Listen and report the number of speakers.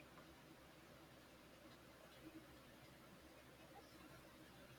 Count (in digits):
0